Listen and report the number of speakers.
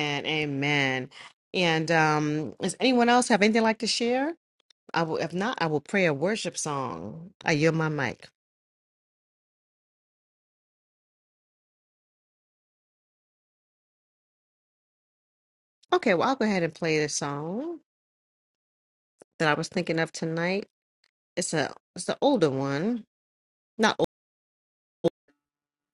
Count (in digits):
1